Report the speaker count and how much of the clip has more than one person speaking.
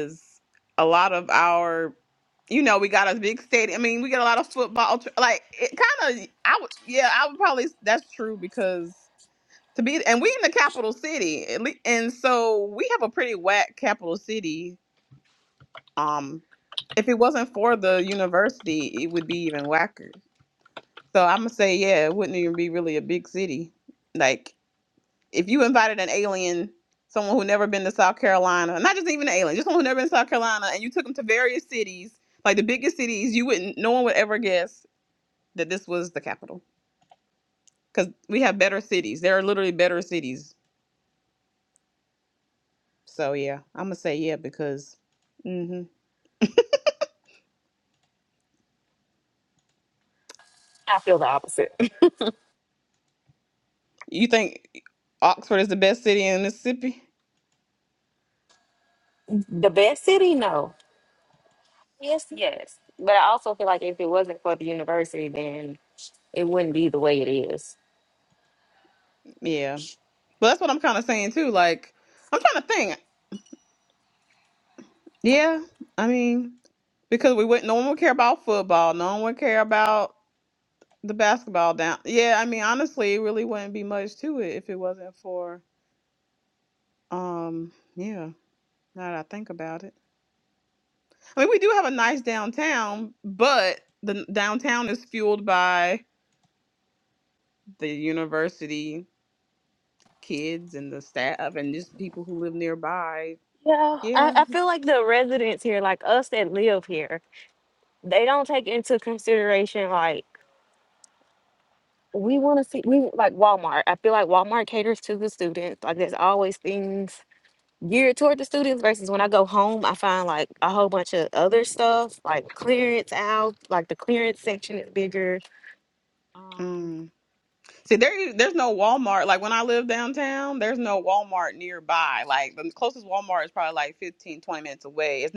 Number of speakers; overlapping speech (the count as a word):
two, under 1%